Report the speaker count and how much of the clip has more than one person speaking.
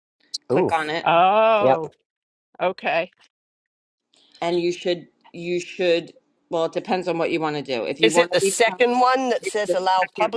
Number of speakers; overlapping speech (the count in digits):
3, about 22%